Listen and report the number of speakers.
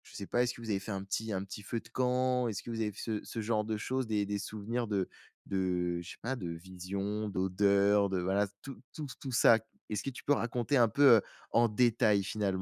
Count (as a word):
one